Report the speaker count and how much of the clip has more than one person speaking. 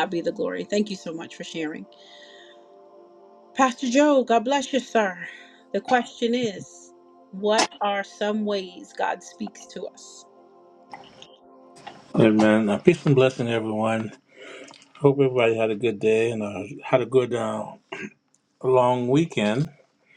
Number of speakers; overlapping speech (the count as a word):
two, no overlap